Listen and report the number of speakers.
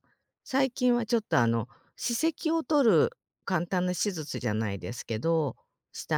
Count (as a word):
one